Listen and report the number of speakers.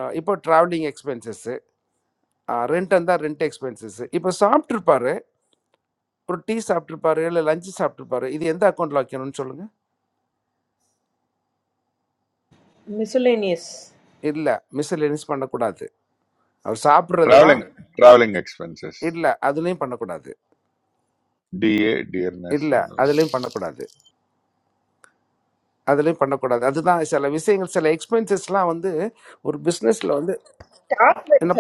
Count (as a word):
three